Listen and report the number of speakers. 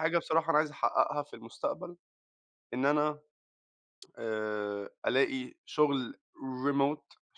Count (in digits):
1